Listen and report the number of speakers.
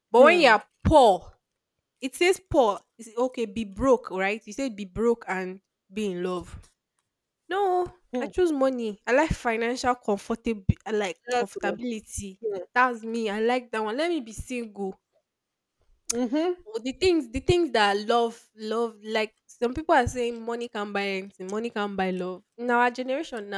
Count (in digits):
2